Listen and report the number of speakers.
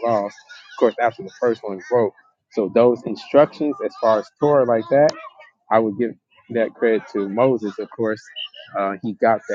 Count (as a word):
one